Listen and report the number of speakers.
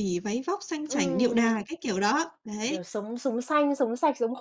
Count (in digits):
2